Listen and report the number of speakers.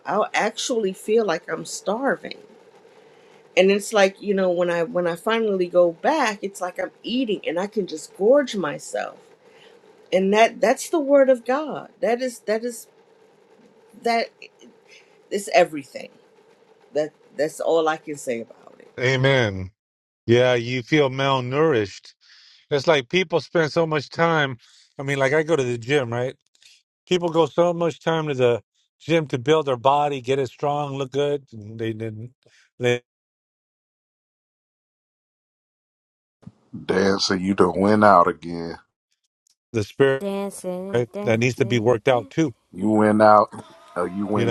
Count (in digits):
4